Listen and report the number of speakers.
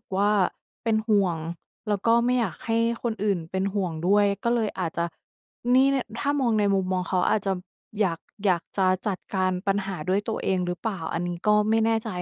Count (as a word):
one